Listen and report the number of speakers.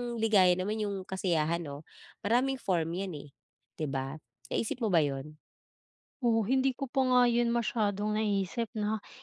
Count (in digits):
2